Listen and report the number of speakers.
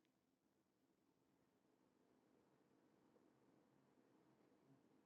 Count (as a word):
zero